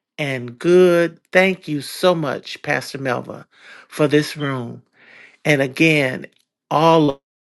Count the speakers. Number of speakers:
one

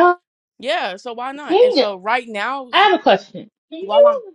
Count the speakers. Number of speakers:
two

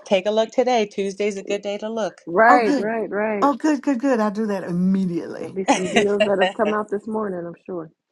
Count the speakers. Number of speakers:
three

